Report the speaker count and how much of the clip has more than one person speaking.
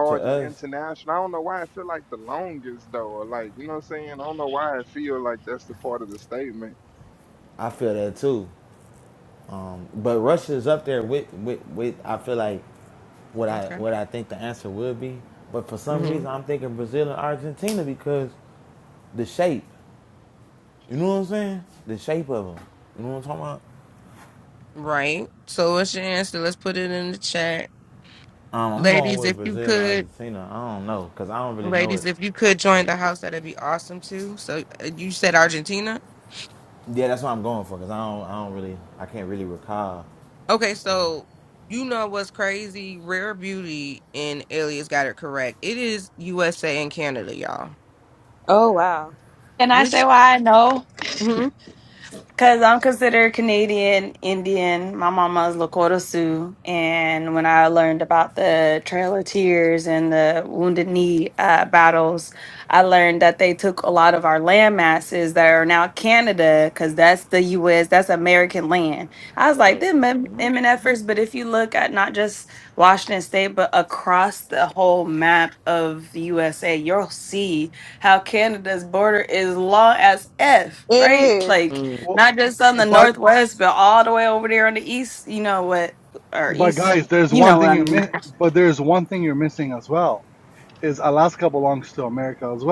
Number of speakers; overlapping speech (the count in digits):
6, about 7%